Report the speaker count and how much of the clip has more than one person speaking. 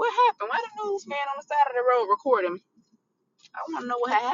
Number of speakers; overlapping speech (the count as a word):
one, no overlap